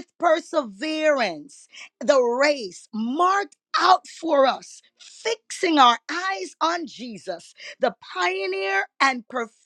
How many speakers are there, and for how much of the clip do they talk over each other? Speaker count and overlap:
1, no overlap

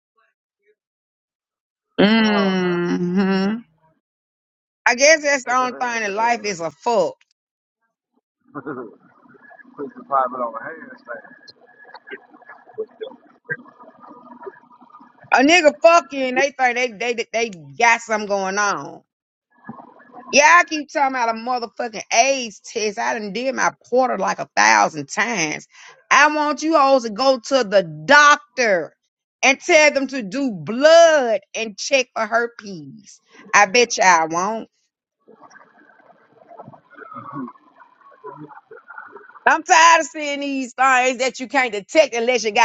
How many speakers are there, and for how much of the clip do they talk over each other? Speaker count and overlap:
2, about 2%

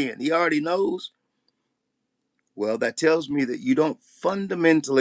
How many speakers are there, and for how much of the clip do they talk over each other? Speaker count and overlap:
1, no overlap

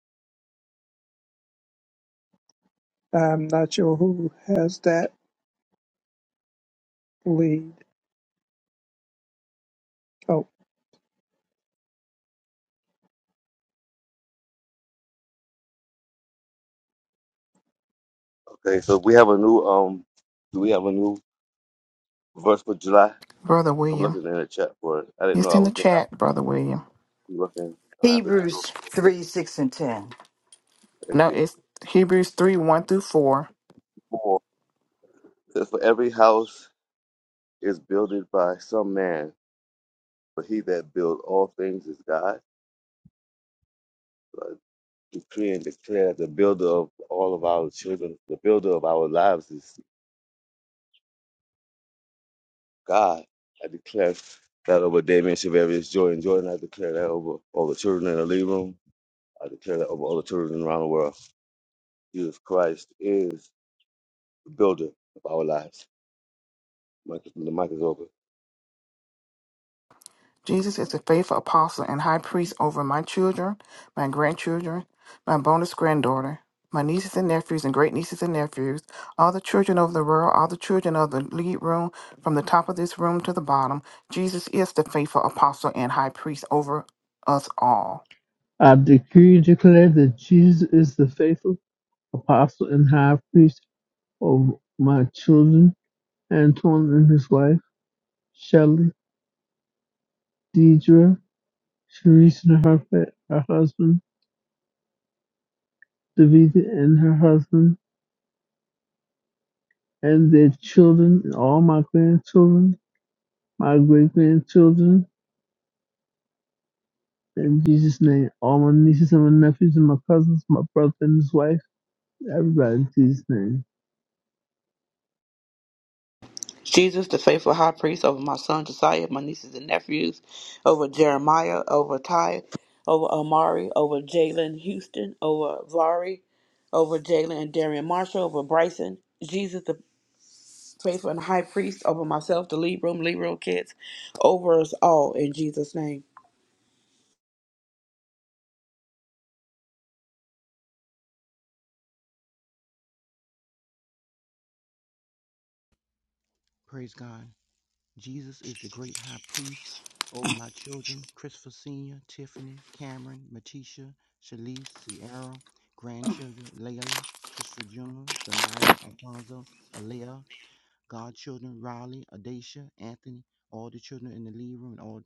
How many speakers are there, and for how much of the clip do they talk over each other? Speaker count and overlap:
7, about 1%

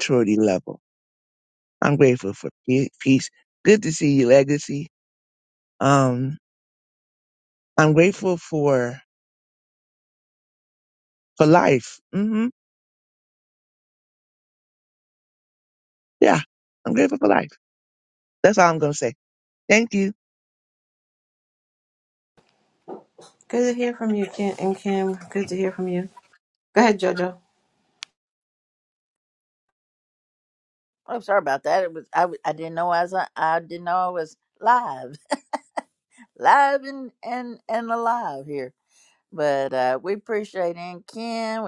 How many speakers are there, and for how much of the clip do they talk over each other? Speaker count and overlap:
3, no overlap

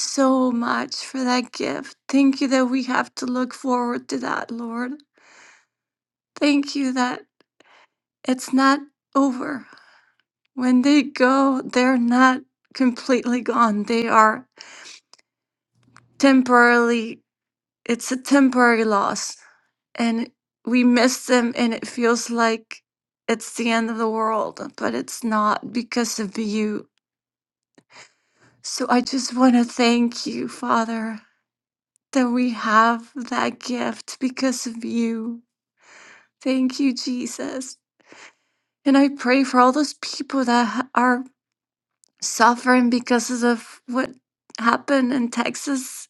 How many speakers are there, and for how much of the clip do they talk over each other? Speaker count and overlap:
1, no overlap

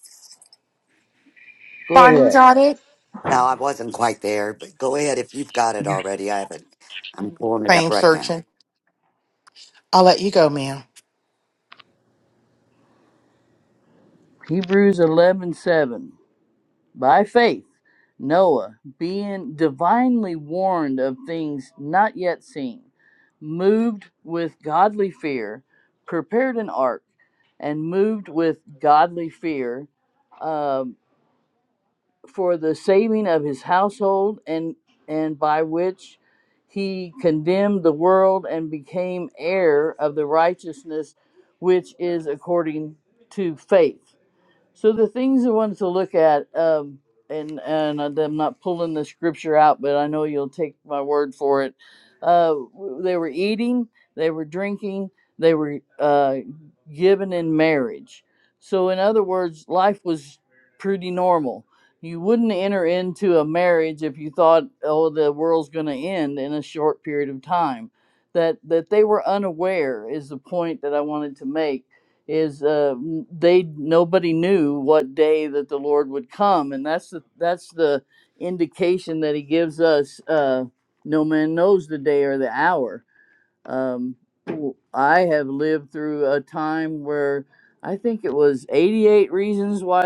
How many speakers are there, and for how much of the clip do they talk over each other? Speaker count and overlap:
3, about 1%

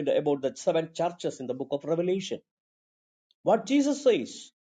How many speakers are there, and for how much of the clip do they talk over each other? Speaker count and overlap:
1, no overlap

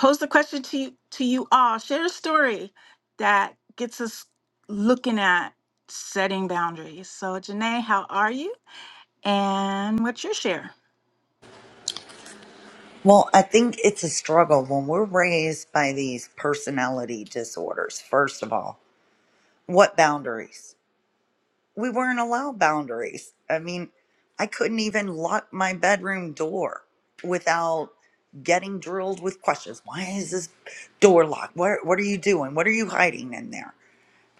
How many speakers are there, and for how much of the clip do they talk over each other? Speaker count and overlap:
2, no overlap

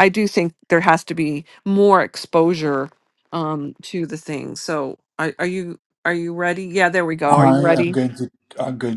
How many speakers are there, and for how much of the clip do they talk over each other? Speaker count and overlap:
2, about 8%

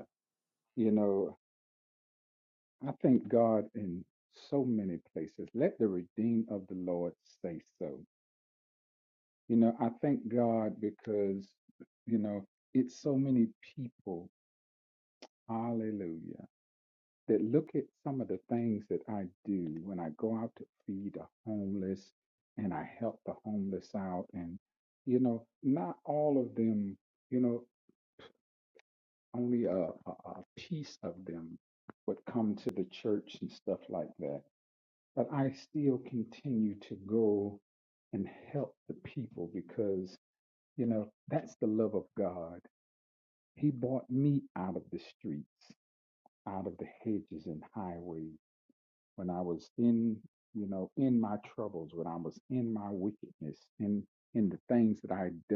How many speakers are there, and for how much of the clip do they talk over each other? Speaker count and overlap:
1, no overlap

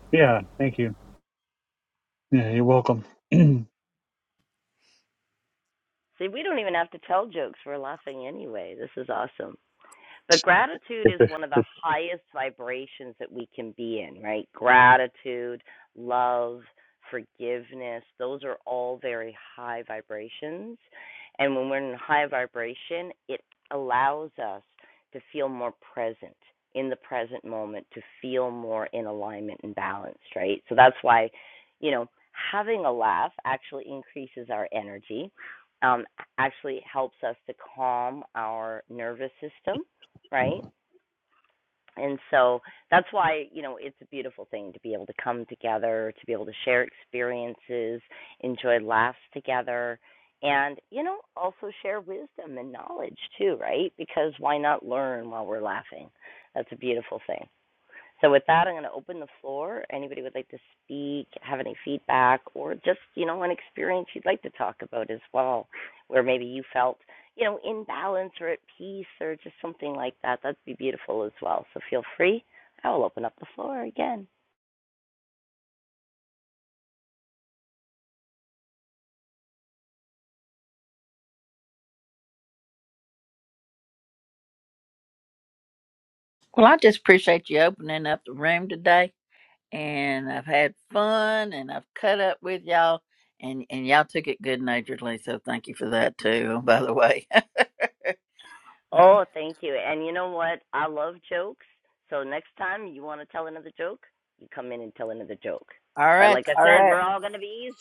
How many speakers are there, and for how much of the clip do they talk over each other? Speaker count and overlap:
3, about 1%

